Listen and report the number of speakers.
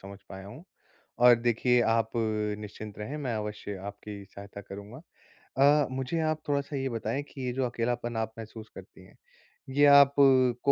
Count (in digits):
1